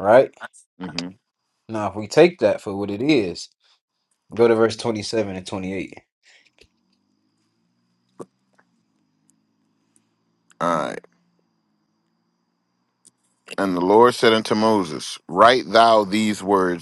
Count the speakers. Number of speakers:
two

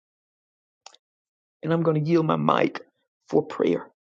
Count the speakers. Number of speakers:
one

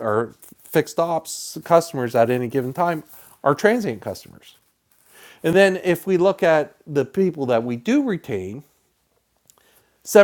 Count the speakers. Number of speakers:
one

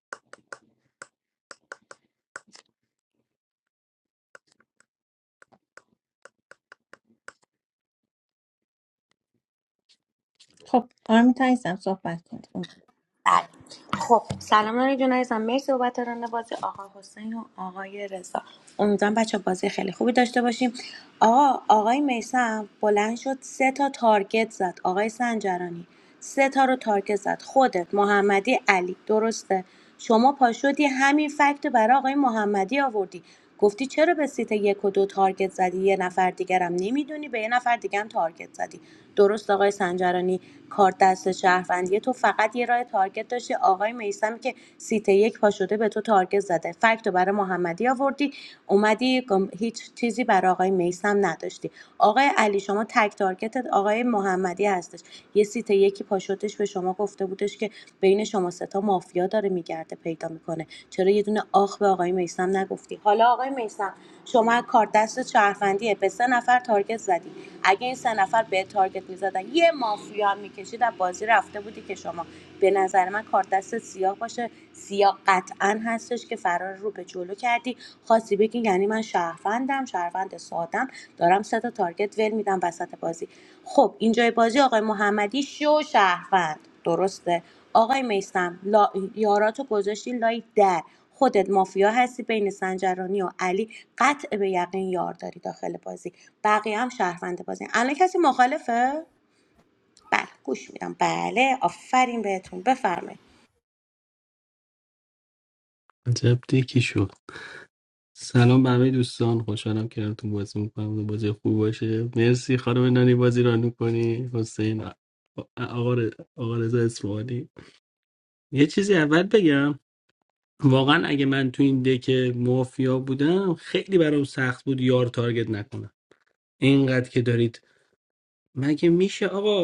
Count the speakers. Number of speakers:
three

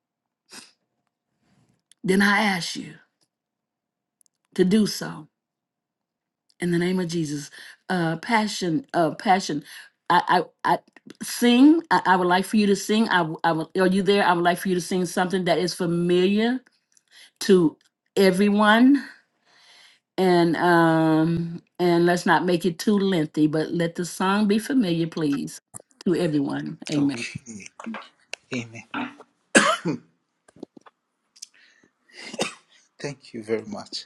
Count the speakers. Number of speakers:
two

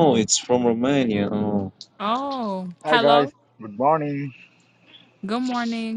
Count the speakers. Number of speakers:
three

